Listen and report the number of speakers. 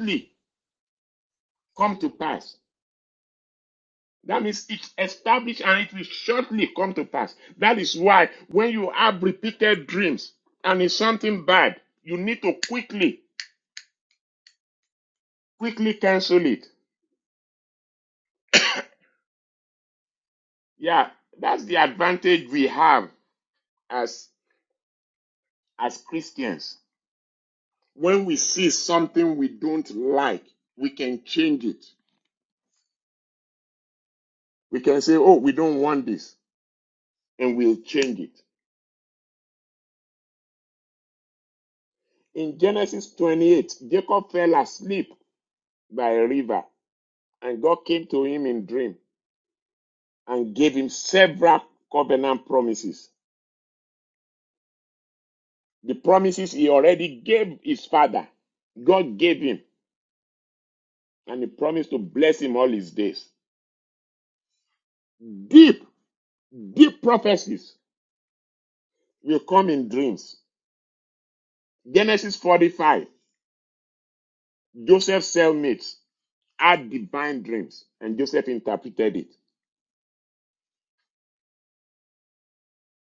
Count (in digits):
1